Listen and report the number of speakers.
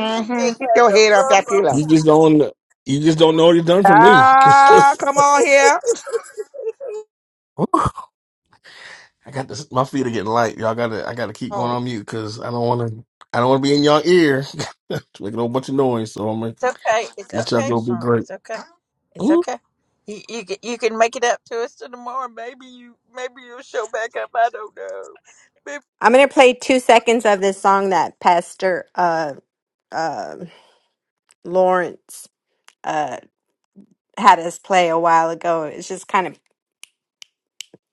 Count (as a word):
four